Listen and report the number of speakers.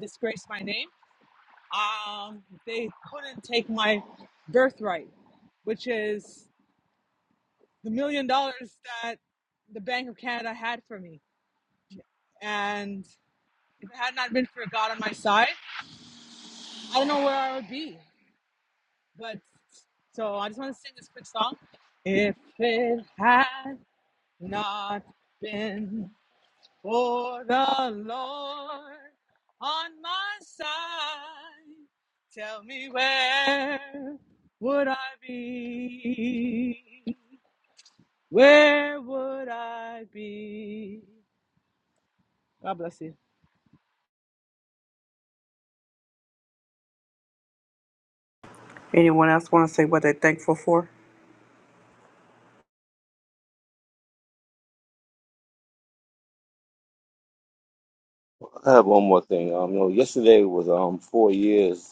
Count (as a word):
three